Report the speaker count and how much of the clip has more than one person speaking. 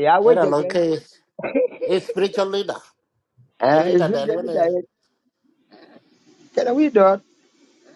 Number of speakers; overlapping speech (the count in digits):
2, about 19%